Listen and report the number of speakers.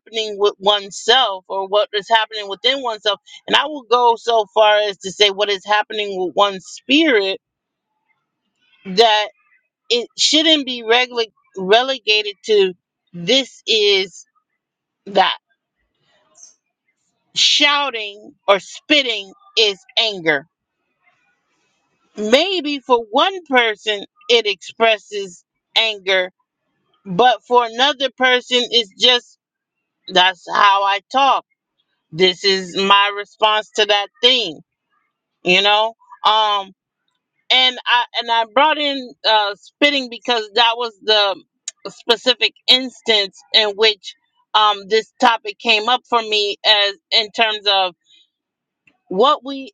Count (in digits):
1